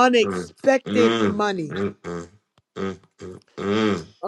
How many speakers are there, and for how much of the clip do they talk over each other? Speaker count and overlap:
2, about 14%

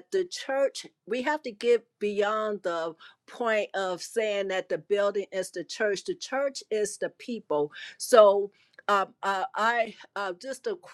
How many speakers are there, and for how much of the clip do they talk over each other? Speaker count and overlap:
1, no overlap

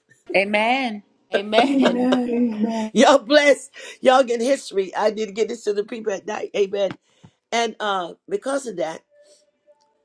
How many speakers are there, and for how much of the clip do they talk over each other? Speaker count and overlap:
3, about 4%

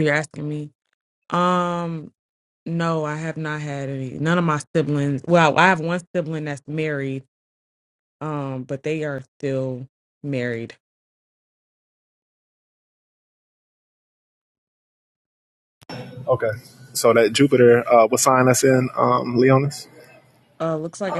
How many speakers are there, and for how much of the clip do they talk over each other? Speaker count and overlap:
2, no overlap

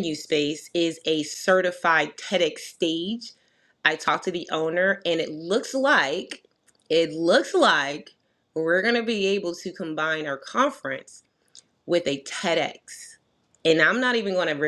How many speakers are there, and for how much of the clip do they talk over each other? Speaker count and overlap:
1, no overlap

